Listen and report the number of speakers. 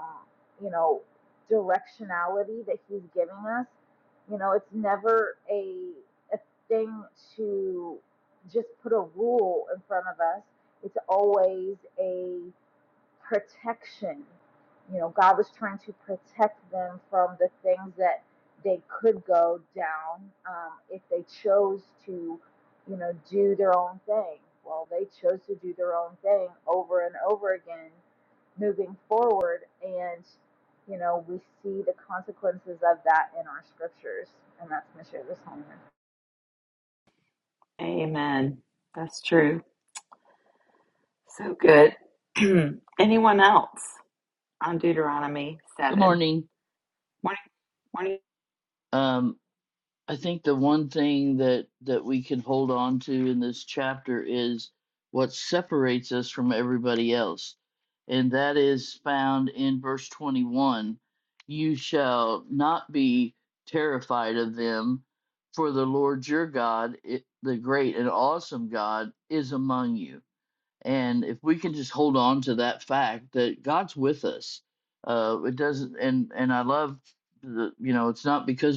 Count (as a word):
three